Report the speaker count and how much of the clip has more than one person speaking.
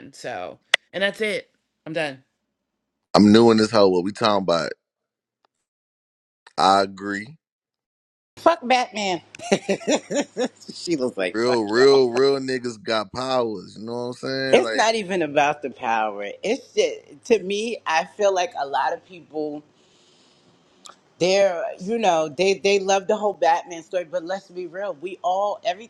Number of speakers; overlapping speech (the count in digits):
3, about 4%